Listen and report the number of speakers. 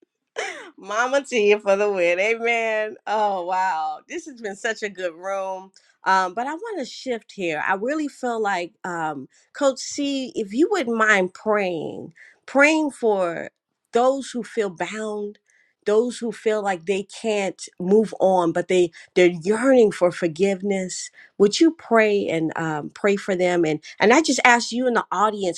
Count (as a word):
one